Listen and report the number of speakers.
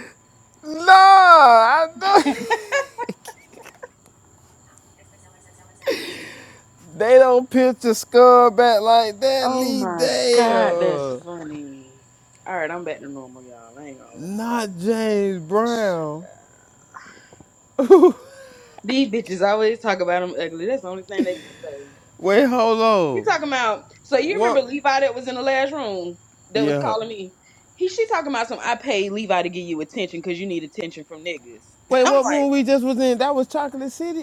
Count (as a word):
two